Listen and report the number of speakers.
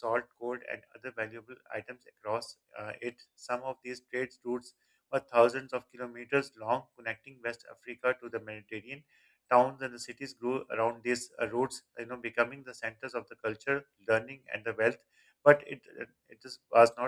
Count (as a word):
one